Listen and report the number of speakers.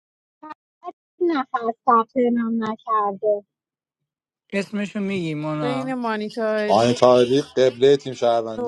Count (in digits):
4